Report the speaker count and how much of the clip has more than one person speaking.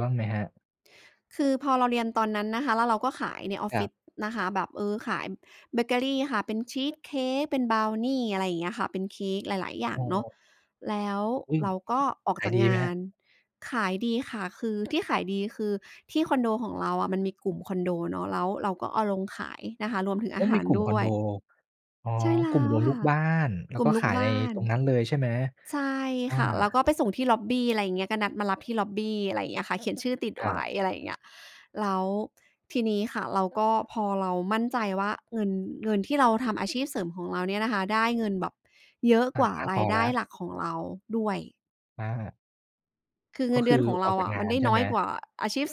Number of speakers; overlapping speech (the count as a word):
two, about 13%